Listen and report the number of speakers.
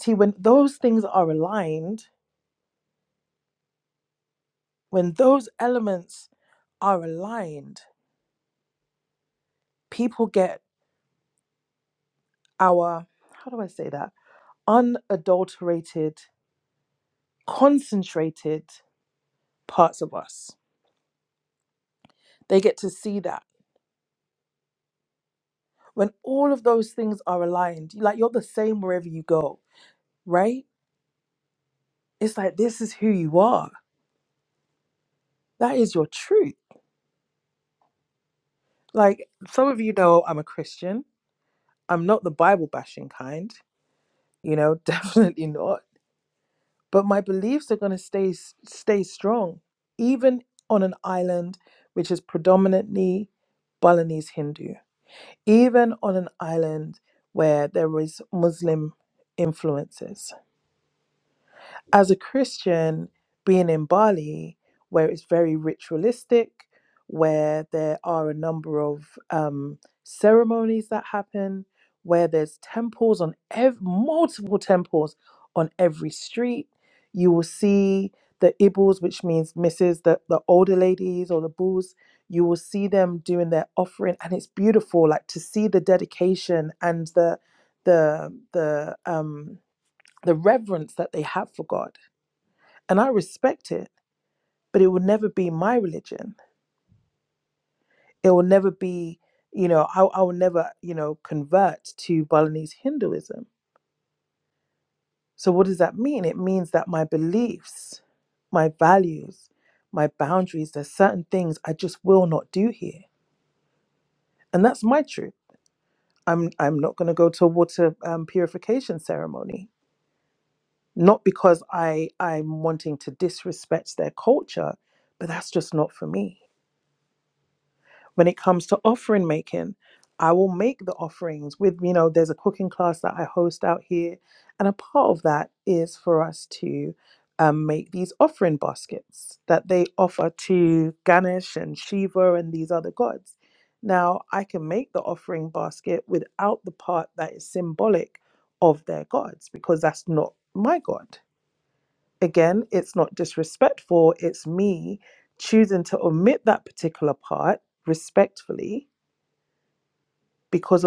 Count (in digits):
1